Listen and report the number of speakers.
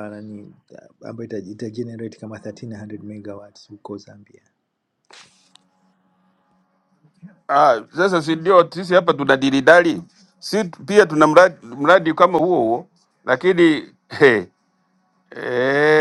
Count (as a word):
two